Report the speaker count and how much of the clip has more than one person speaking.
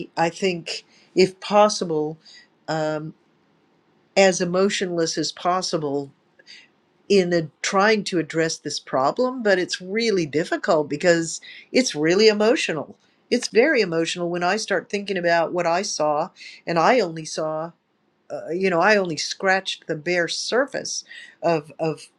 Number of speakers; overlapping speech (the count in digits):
1, no overlap